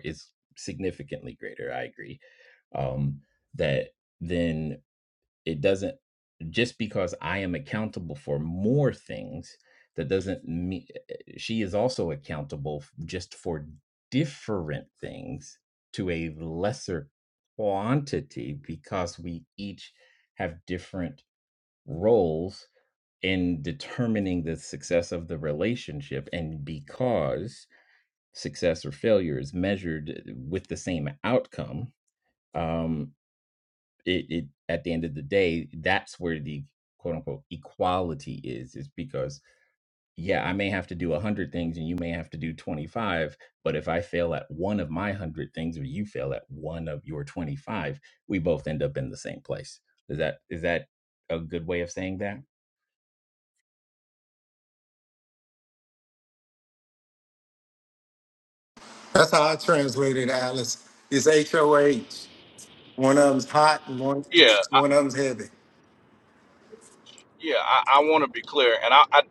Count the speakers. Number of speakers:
three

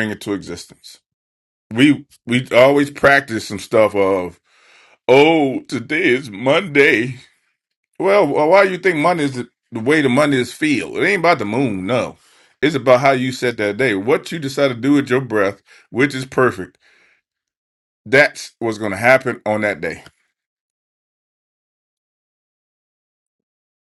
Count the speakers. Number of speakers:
one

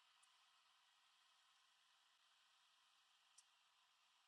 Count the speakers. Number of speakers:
zero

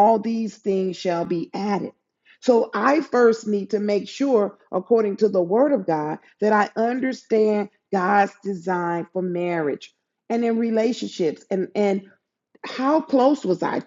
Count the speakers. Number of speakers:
one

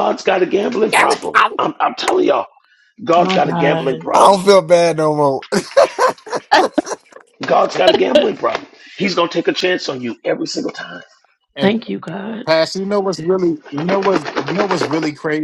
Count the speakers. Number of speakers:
four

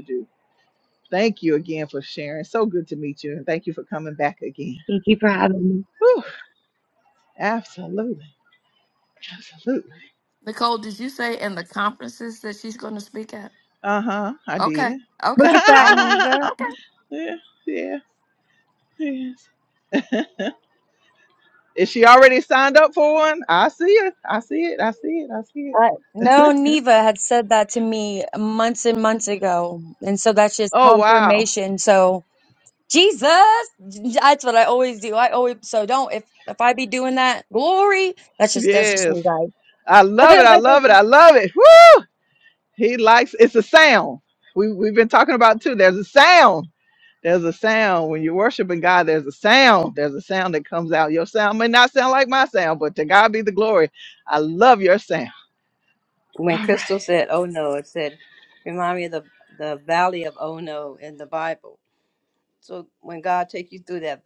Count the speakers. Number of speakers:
four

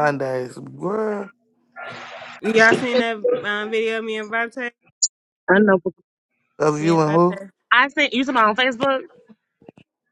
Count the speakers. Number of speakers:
three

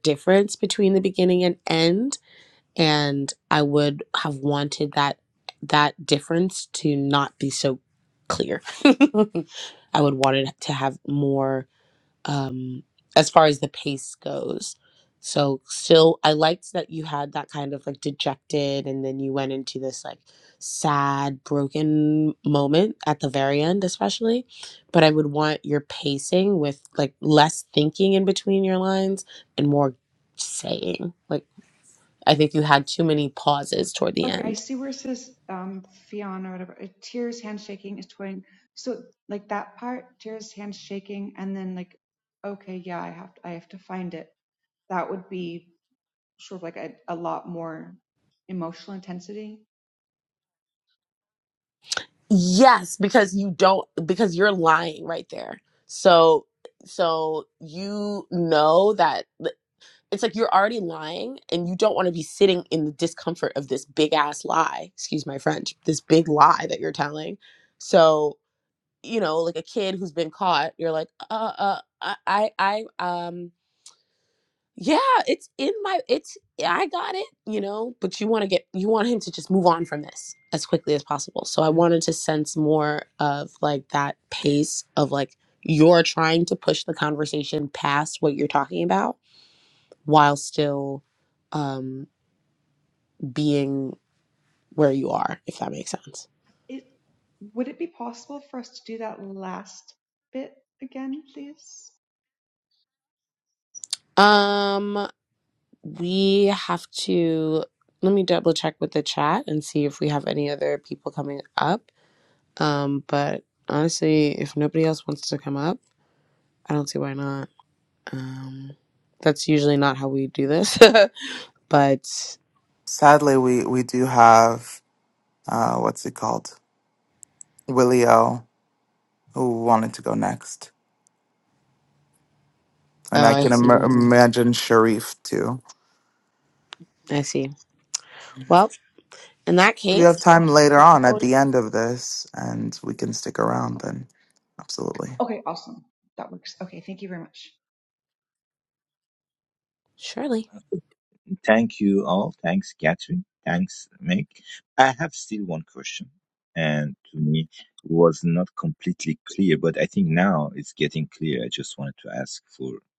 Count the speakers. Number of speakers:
four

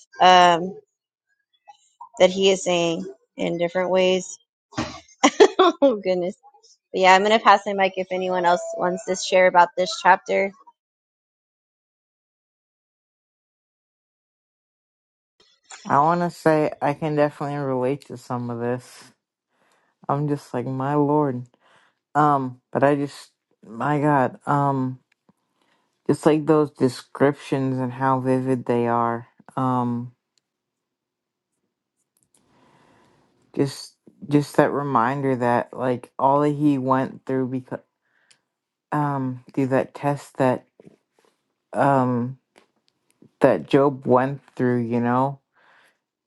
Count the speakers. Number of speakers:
two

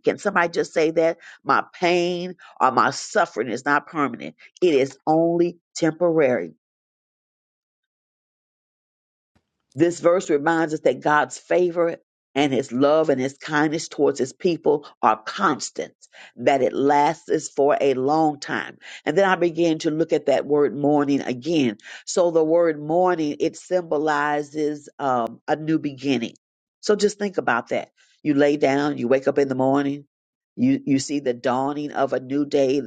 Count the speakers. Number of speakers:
one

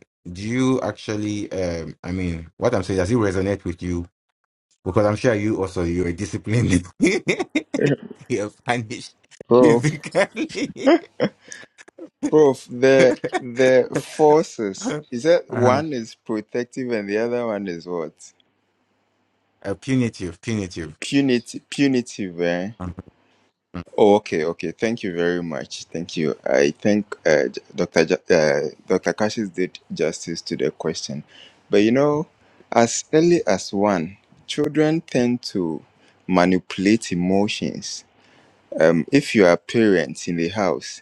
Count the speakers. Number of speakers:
two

